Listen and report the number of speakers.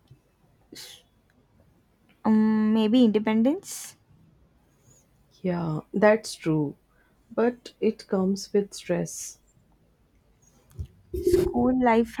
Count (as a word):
two